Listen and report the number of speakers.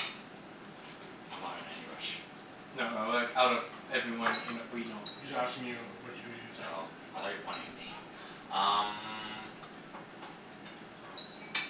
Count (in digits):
3